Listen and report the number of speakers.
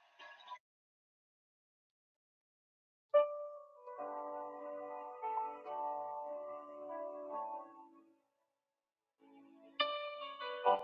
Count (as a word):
zero